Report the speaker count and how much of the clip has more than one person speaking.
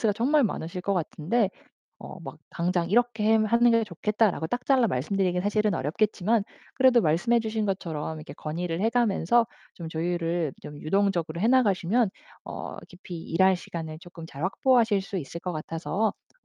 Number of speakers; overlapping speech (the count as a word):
one, no overlap